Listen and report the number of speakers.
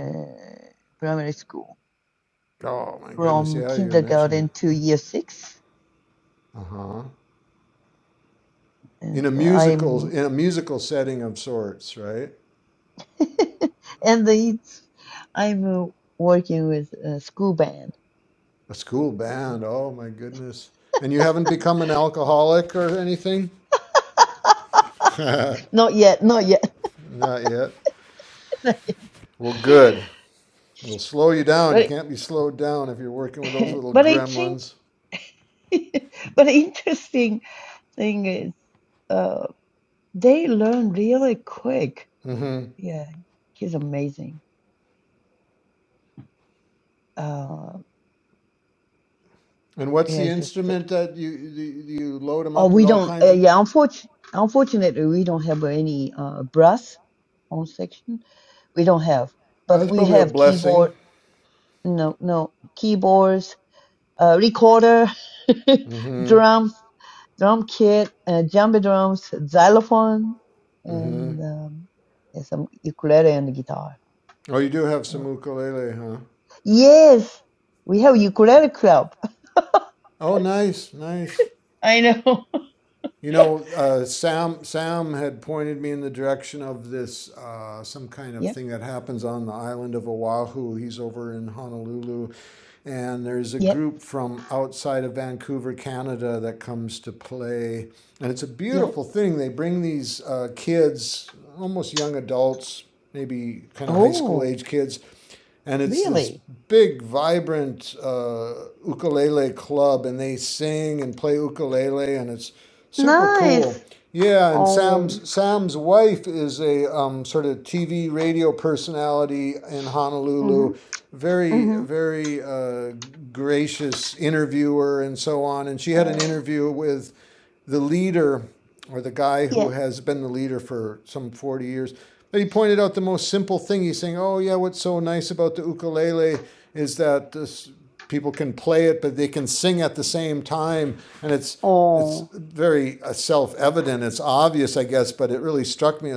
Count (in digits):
2